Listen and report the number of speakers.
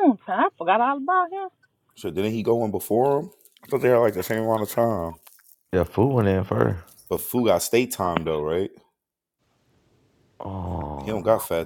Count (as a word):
three